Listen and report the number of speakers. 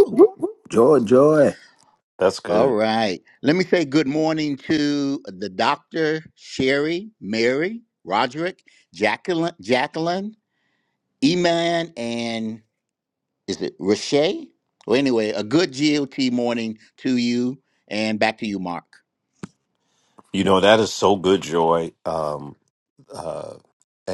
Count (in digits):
3